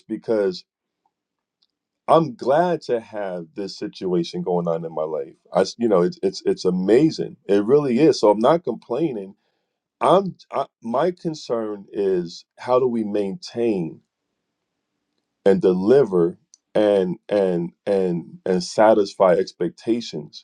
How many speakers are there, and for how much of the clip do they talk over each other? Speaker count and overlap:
1, no overlap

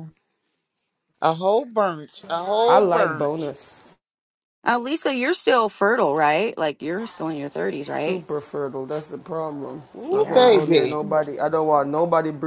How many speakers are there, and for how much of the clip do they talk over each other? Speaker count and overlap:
3, about 13%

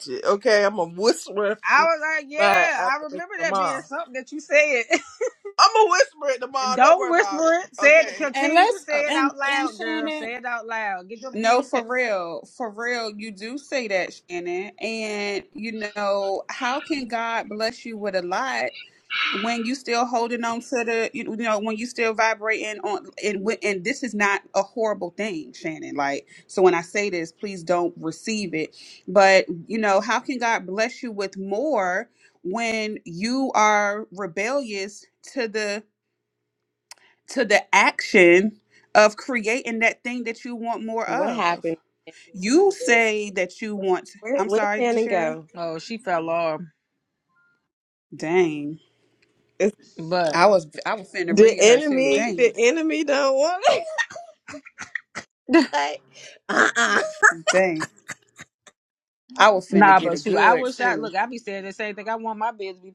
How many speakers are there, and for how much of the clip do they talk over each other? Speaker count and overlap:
4, about 15%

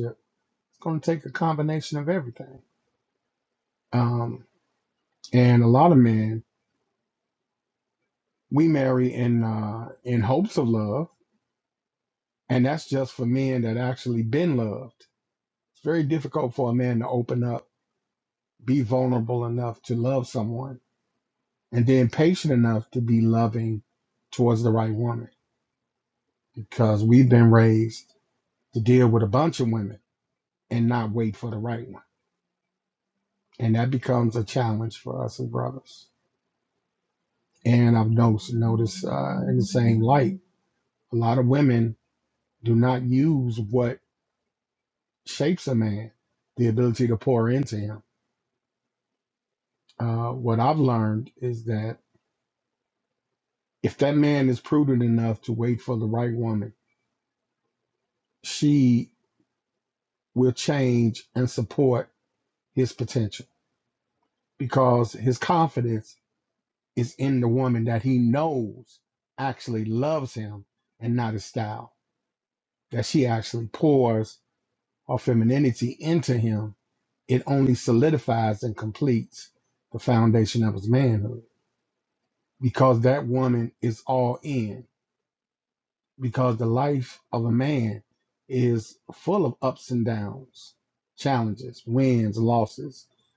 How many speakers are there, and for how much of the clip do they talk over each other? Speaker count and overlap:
1, no overlap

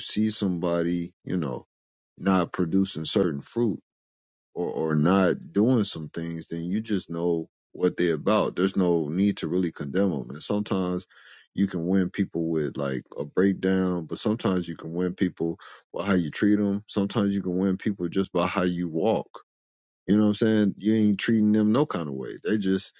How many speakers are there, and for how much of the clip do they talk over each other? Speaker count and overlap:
1, no overlap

